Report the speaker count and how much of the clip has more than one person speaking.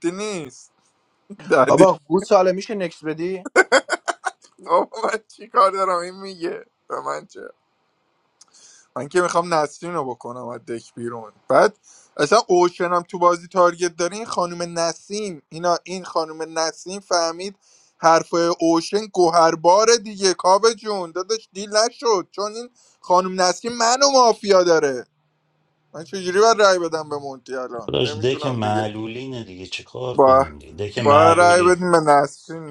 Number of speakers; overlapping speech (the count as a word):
three, about 7%